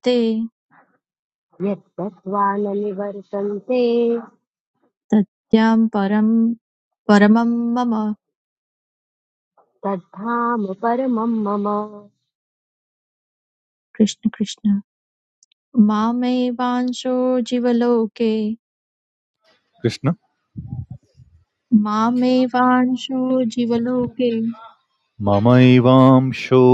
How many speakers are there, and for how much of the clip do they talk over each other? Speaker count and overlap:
3, no overlap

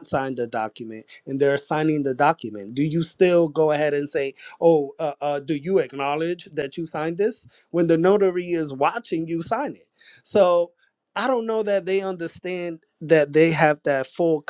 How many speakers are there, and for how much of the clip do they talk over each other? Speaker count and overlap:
1, no overlap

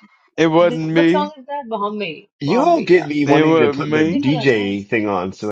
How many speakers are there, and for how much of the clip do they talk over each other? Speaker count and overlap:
3, about 45%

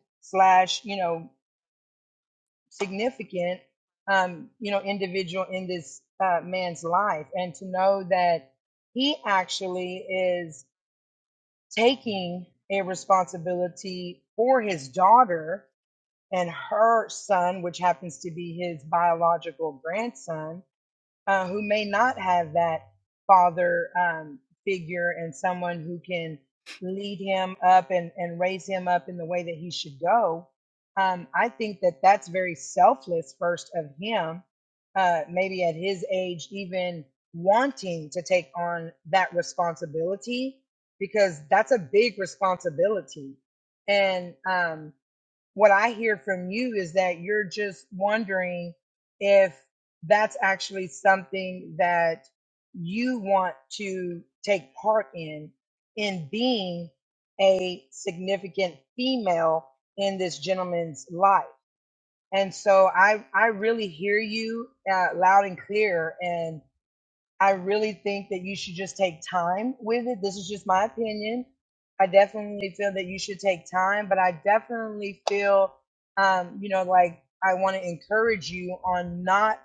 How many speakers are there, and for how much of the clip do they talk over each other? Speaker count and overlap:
1, no overlap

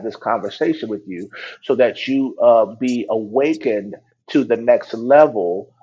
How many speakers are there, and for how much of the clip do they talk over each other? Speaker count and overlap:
1, no overlap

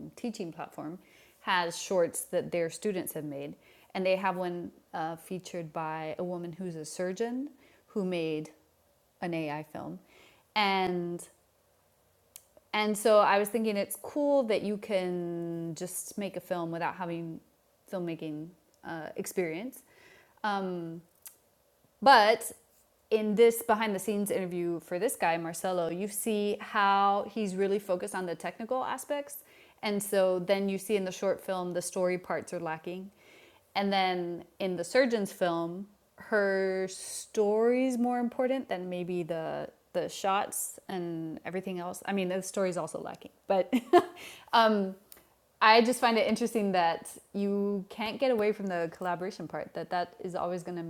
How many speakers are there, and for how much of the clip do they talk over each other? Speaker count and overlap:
1, no overlap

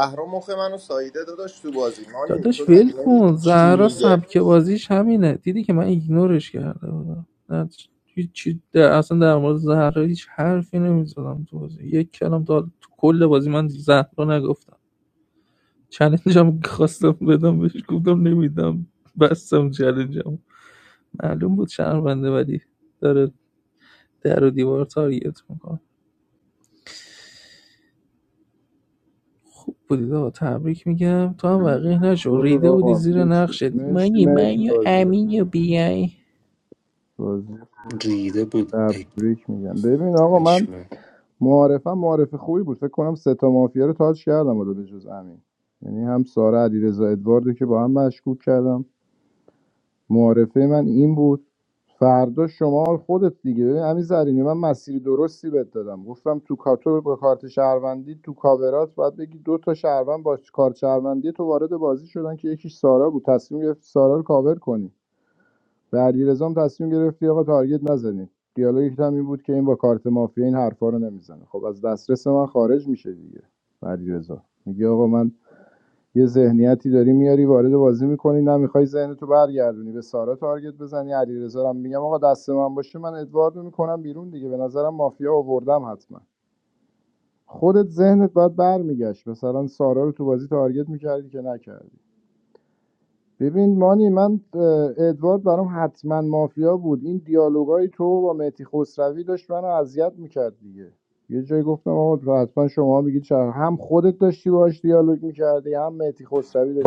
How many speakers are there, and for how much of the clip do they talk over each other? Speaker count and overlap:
4, about 5%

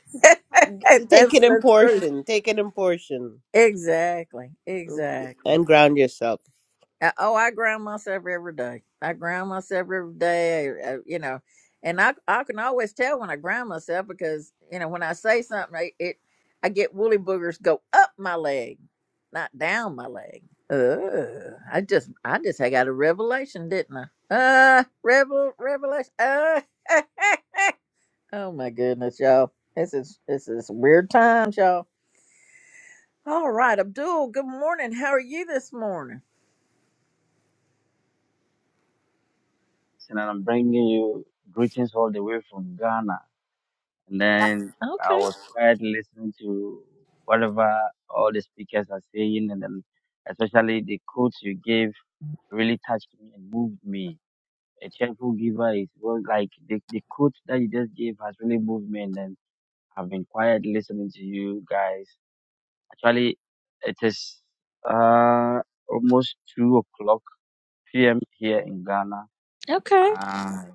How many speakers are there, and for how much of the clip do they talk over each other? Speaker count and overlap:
3, about 2%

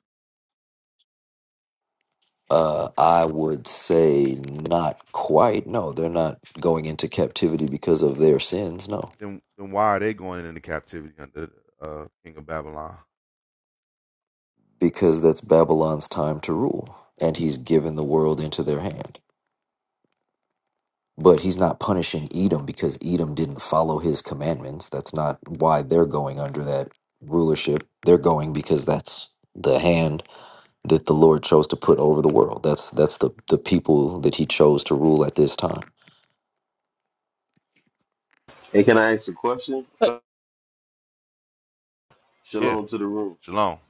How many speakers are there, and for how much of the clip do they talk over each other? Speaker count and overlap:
3, under 1%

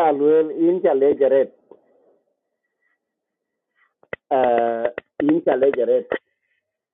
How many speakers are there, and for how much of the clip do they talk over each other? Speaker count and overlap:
1, no overlap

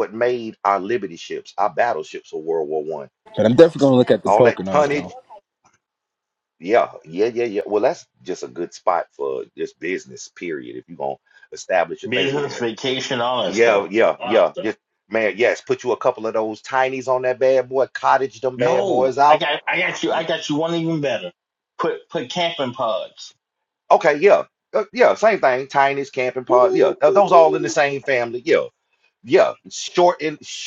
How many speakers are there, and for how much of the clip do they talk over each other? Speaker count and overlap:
3, about 13%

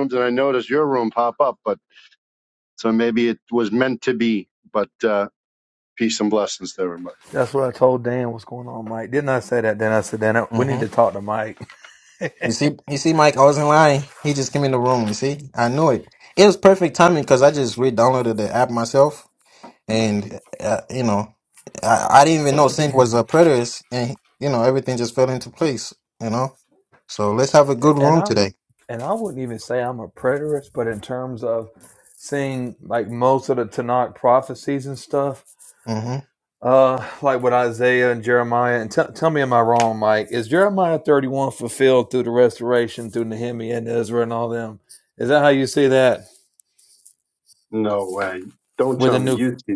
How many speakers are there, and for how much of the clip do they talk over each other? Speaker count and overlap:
3, about 2%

